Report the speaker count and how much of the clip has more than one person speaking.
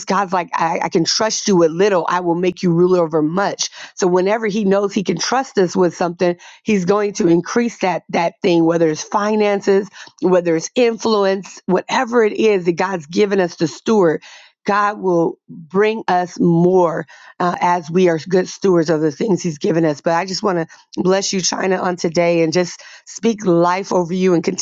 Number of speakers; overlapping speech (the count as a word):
one, no overlap